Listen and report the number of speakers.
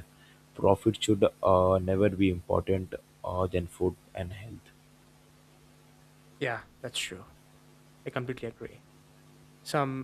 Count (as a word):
two